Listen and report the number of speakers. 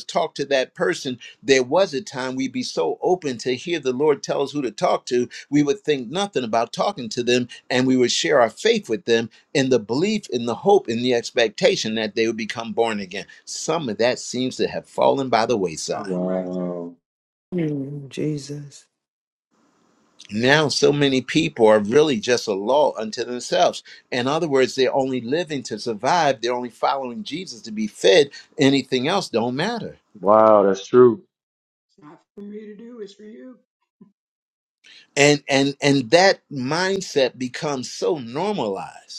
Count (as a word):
four